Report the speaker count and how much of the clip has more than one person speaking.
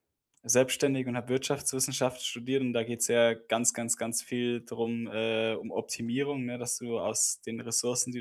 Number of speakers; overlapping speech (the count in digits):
1, no overlap